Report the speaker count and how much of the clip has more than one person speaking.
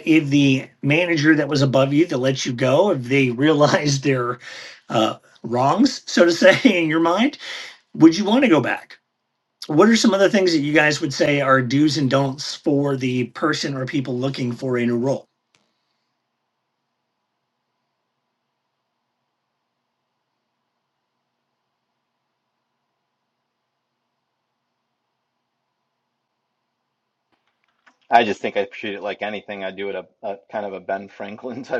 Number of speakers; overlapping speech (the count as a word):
two, no overlap